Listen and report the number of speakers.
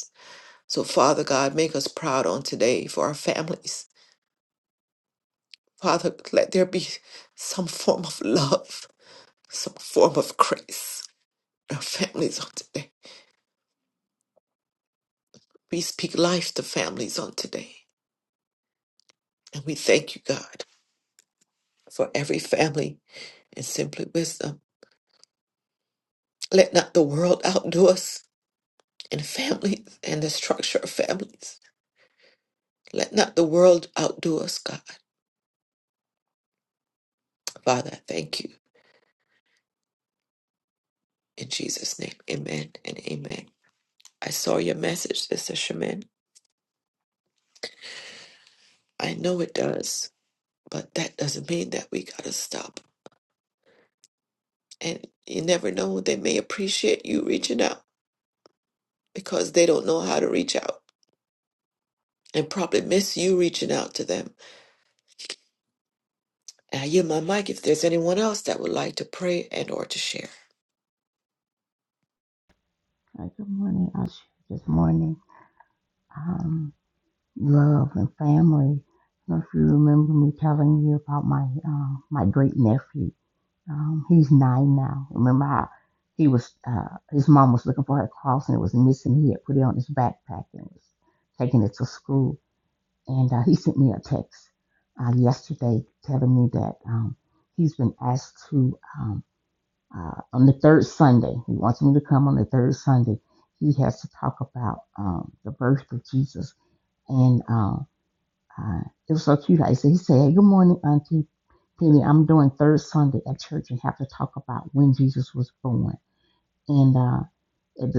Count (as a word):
two